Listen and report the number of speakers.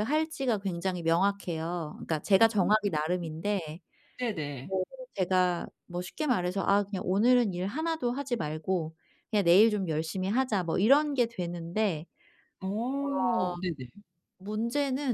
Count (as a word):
two